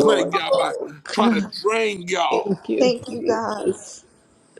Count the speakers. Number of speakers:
3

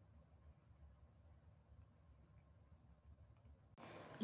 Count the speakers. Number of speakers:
0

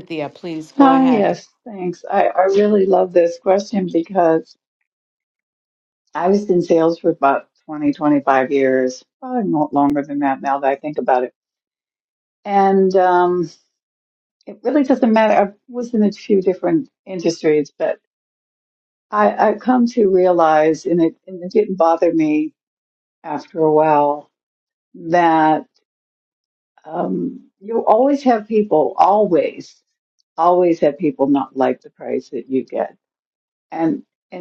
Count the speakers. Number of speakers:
2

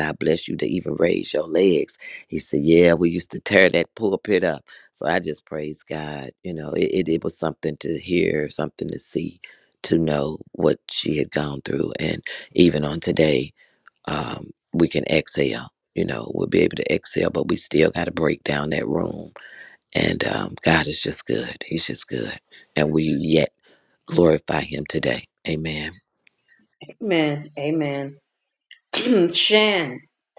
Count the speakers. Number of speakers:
2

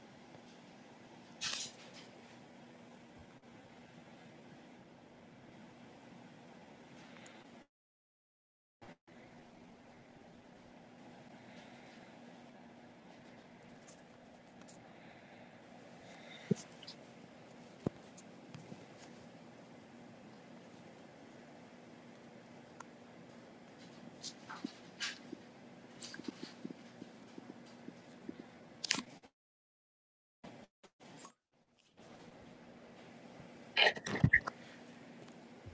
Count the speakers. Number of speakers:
0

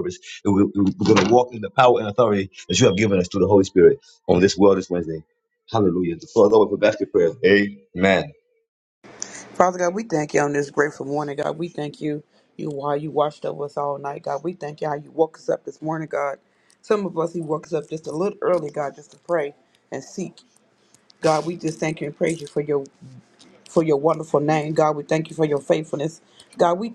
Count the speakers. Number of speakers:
2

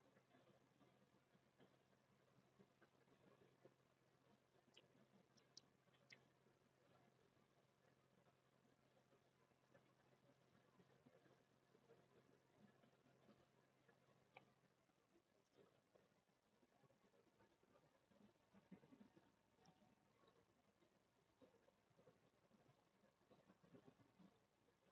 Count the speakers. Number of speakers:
0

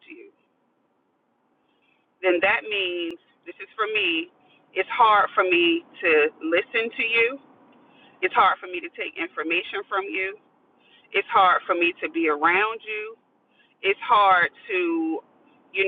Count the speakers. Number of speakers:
1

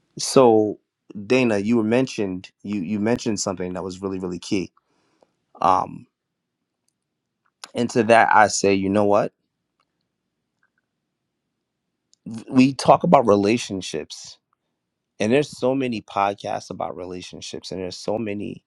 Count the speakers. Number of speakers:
1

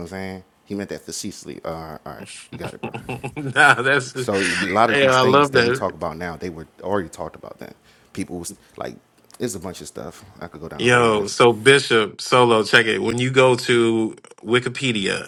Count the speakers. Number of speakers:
2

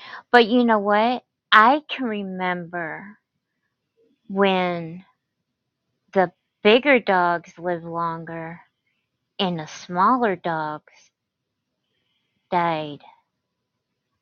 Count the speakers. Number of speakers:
1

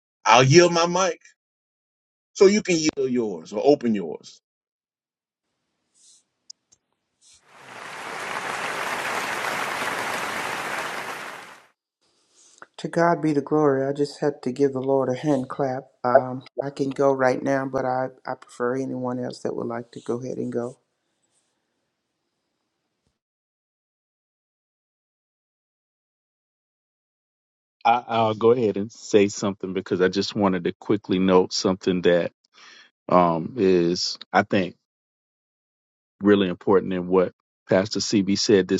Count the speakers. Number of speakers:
3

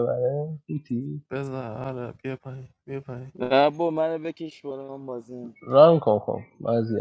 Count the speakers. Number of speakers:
3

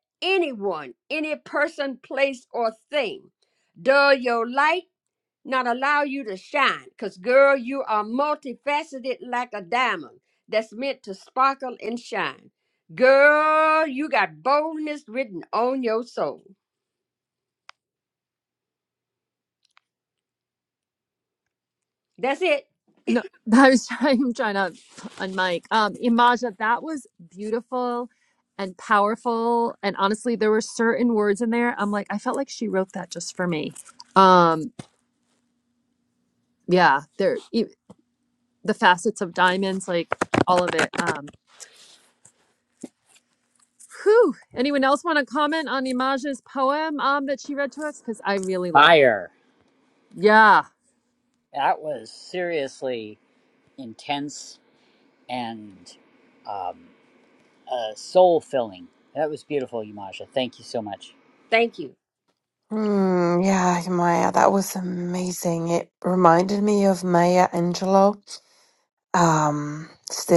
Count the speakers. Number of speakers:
4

